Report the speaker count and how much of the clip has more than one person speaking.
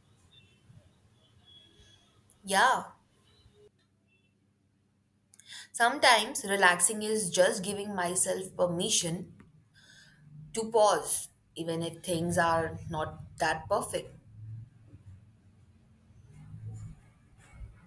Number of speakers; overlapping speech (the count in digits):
1, no overlap